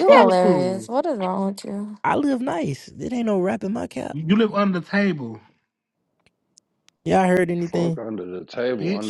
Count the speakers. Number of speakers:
4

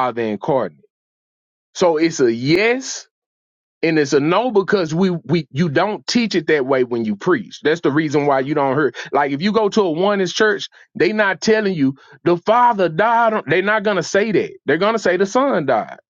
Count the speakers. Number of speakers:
1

